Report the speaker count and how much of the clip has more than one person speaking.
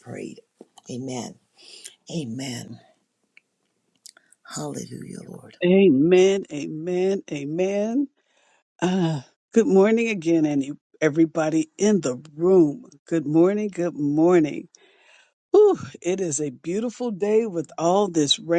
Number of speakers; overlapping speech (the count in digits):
2, no overlap